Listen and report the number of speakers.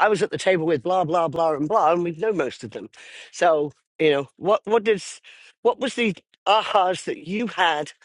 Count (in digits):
1